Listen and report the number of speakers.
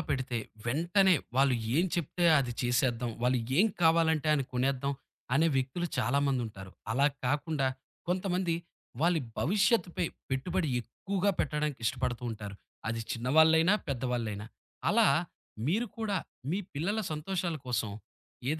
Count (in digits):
1